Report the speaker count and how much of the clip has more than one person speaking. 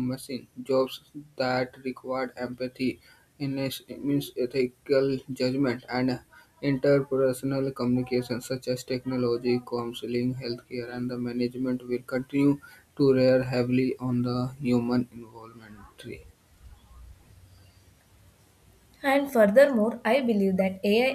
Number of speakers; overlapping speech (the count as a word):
two, no overlap